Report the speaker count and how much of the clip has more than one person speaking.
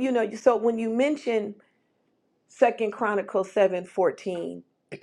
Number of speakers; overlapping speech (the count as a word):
one, no overlap